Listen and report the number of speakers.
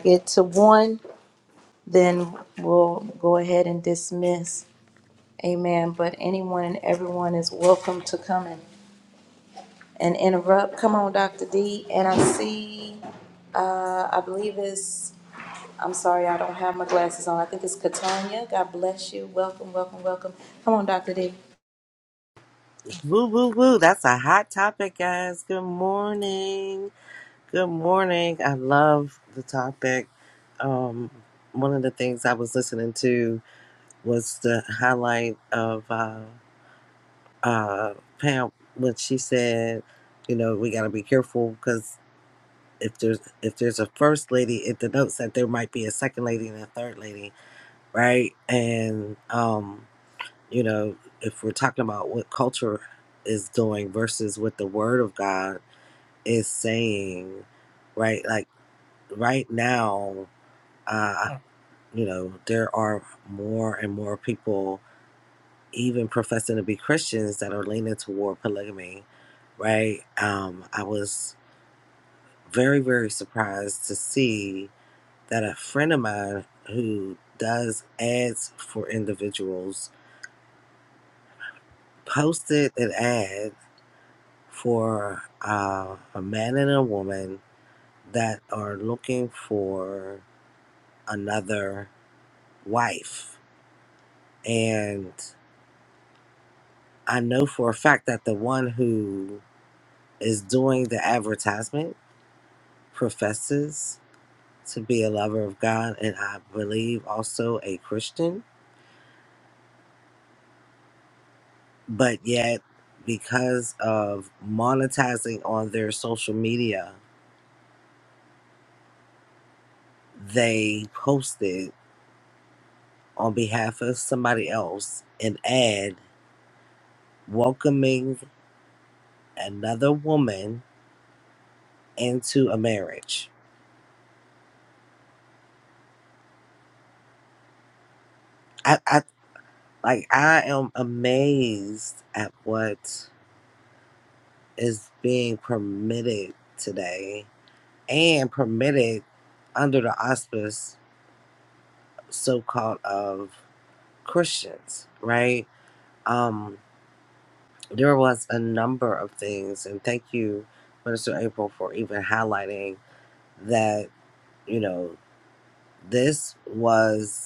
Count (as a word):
two